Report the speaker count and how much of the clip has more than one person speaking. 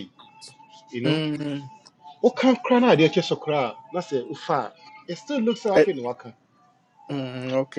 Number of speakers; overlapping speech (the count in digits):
2, about 4%